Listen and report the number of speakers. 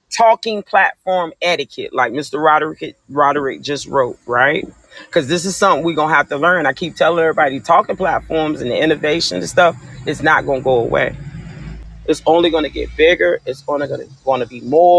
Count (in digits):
1